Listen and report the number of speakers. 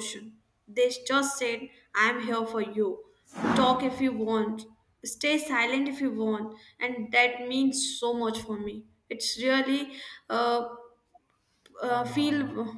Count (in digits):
1